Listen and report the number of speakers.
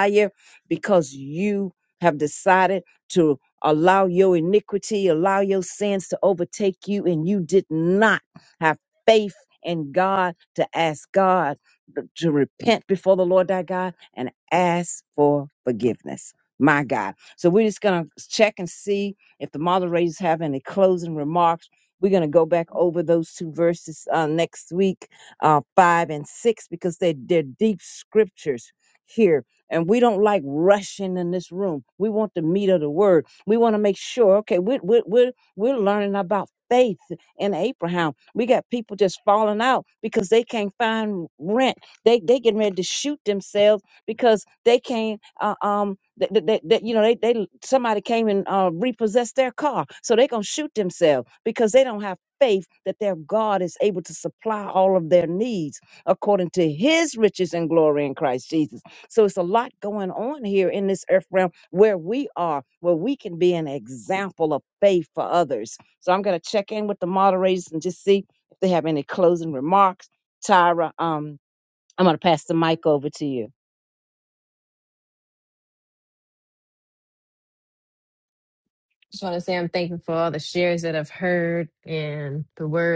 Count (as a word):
two